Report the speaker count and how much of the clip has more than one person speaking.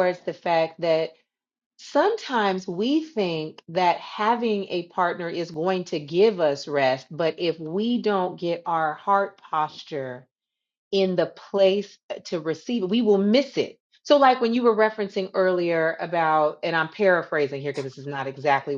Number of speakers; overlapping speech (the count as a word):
one, no overlap